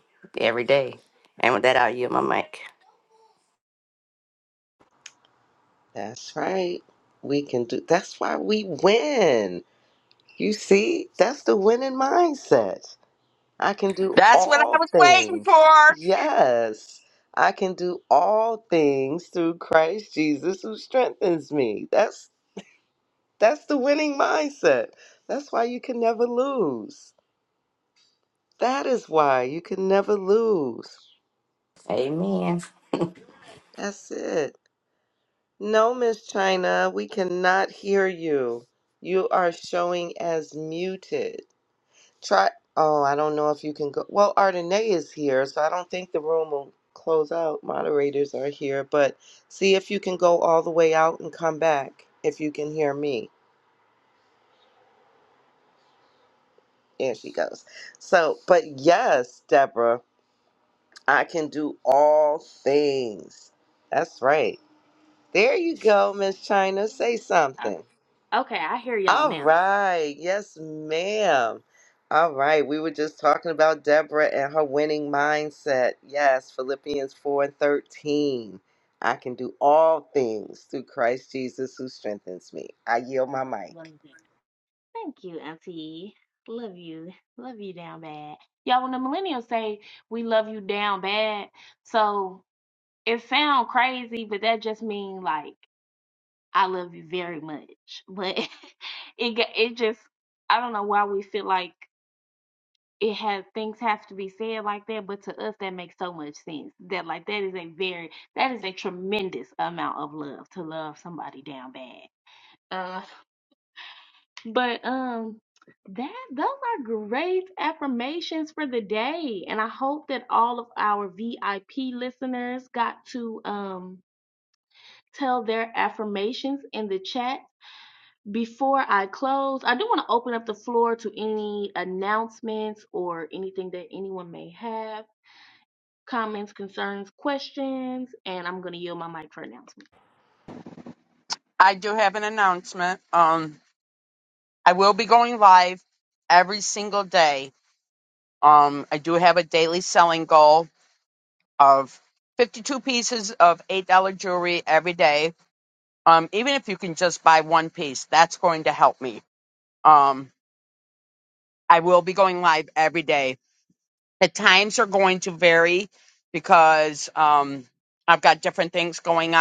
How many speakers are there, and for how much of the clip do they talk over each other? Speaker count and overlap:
4, about 1%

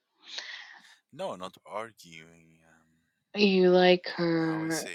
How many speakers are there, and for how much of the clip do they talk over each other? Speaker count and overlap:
2, about 9%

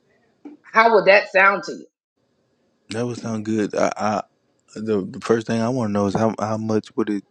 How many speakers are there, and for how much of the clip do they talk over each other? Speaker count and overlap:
2, no overlap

